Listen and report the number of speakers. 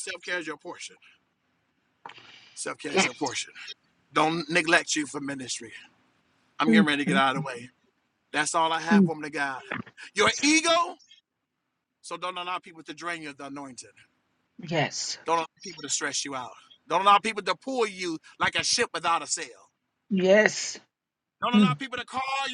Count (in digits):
2